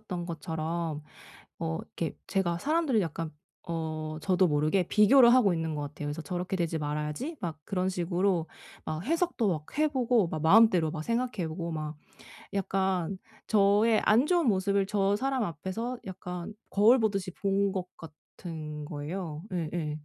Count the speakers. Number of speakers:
1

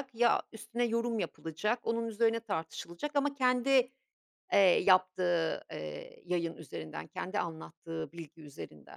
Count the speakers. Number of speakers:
1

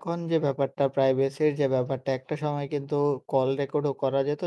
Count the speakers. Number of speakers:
1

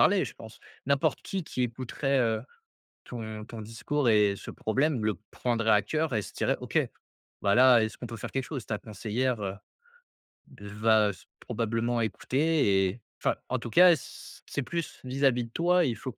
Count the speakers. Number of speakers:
1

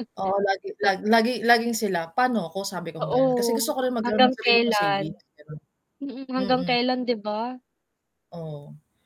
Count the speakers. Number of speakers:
2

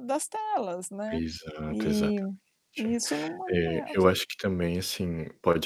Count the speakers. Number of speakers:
2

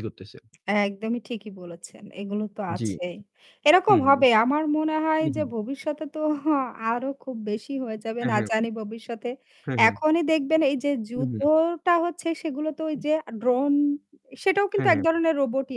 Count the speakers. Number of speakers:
2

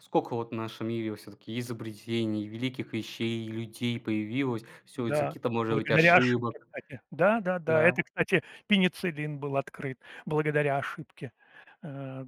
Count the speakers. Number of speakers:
2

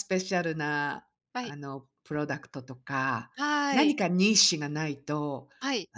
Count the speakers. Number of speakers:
2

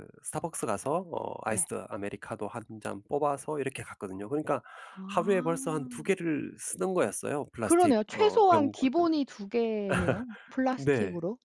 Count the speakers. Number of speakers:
2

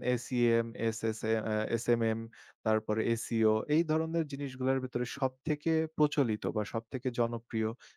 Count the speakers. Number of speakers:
1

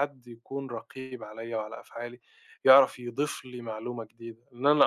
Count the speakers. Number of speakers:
1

